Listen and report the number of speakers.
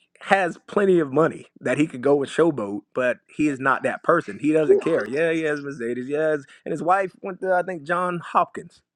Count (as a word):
one